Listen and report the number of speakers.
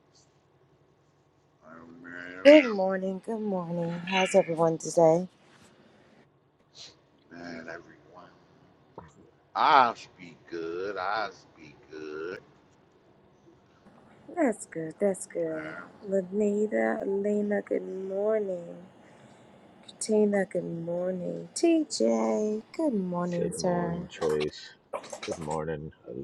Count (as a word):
three